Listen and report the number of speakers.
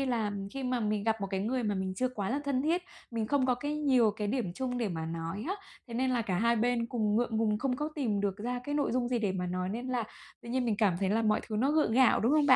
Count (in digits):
1